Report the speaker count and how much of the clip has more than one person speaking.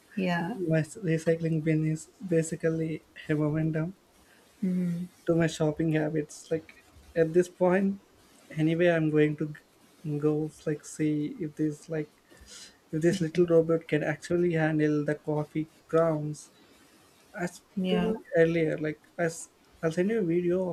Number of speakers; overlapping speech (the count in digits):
2, about 1%